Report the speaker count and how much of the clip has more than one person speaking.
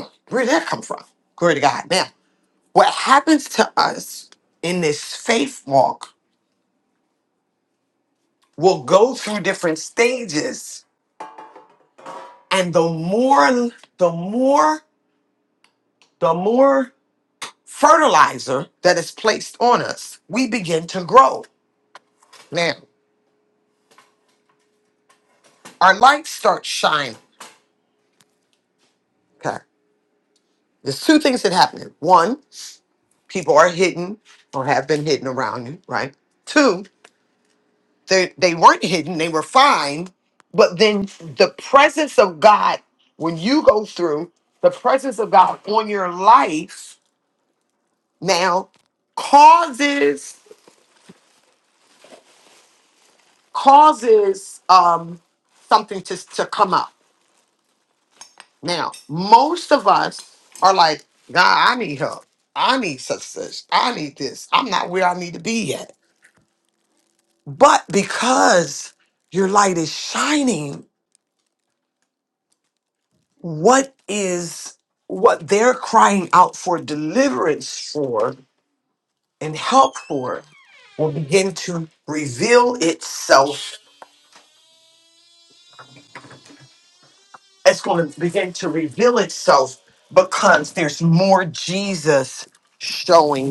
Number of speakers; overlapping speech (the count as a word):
one, no overlap